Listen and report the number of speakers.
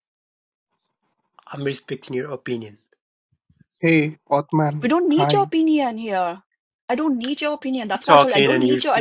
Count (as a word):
three